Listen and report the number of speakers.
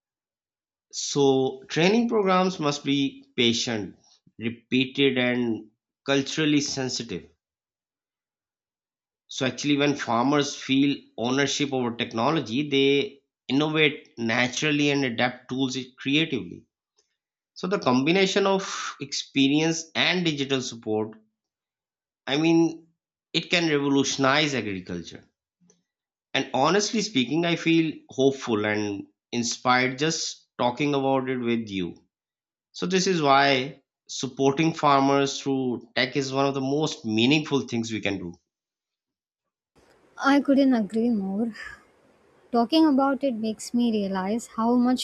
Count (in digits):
2